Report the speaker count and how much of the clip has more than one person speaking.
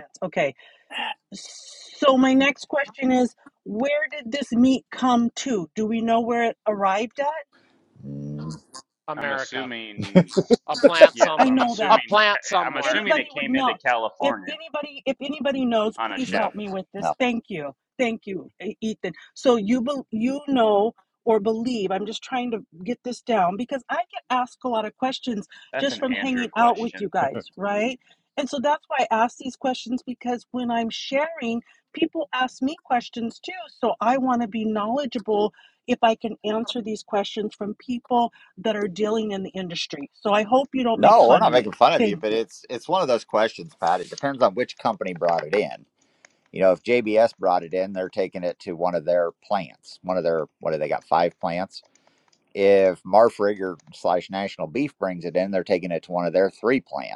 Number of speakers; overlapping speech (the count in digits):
4, about 11%